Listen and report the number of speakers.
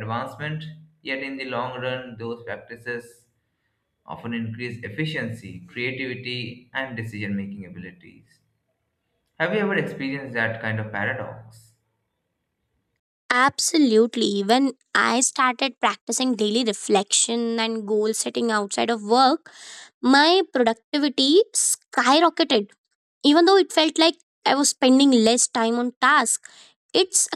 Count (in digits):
2